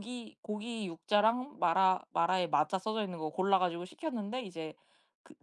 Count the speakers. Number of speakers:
1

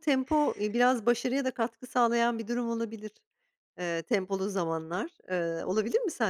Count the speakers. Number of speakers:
1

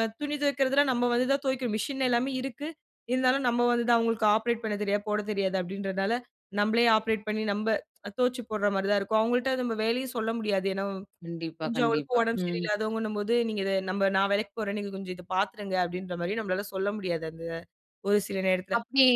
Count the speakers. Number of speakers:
2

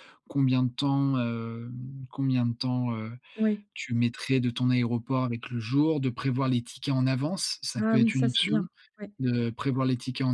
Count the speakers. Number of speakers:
2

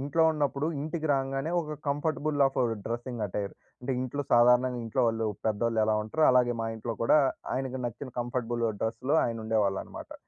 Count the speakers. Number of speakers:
1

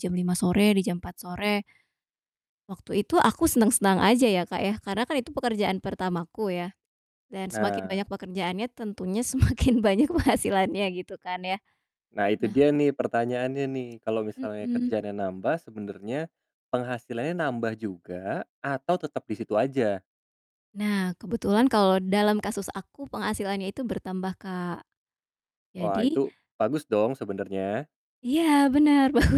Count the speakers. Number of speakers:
2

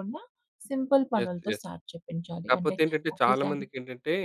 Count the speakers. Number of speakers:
2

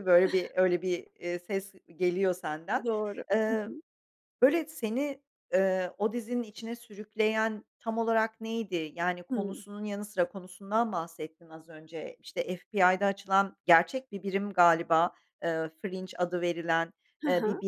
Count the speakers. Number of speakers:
2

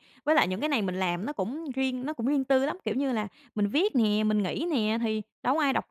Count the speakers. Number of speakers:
1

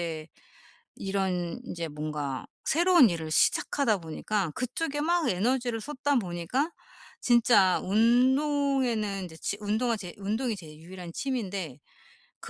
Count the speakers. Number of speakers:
1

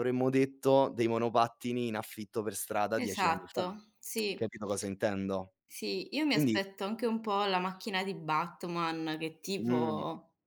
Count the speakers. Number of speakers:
2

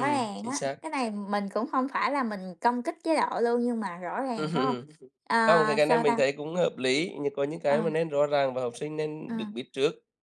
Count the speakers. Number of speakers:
2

